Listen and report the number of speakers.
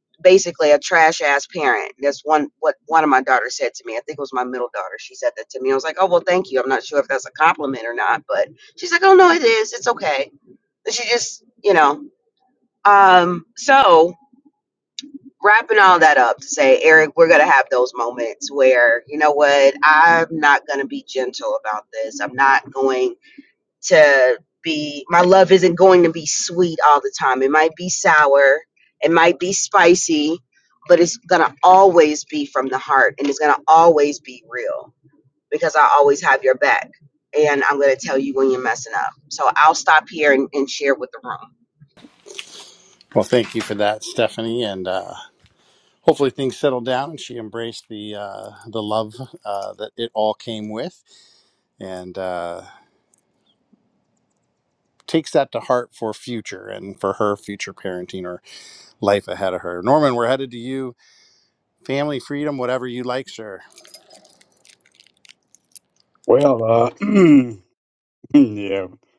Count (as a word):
three